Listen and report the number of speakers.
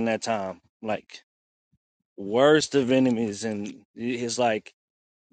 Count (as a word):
one